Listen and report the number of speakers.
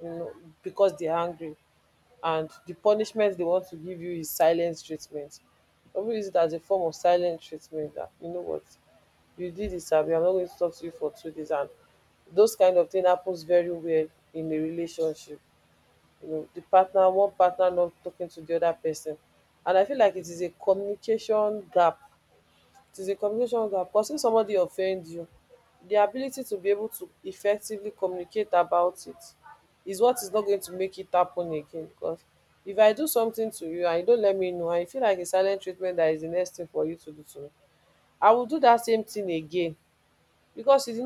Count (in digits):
1